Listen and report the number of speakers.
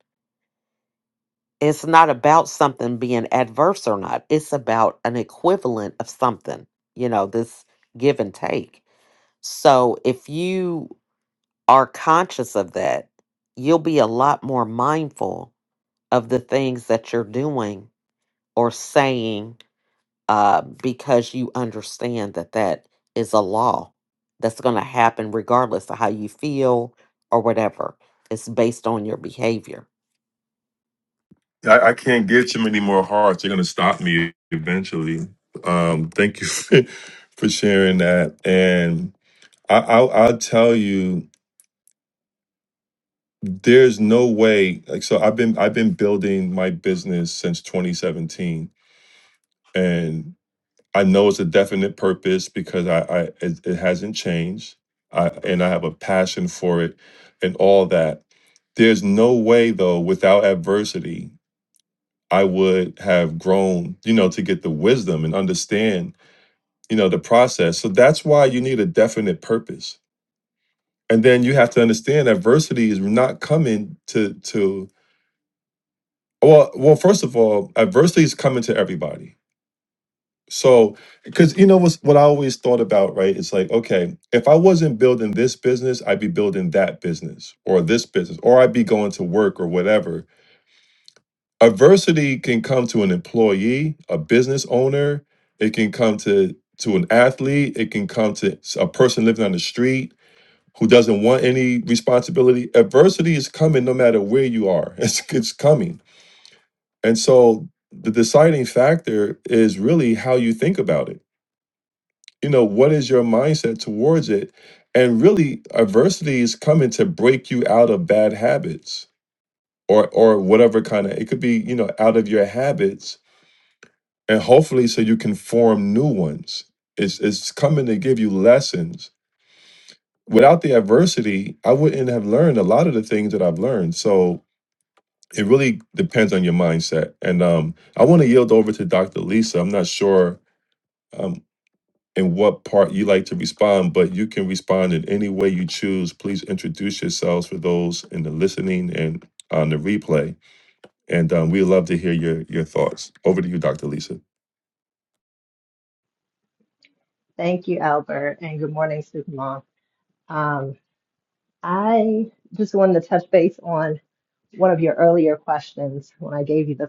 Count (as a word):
three